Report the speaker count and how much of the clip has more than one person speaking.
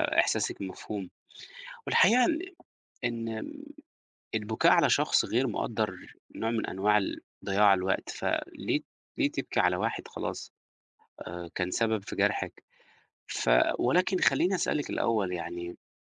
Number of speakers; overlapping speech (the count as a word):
one, no overlap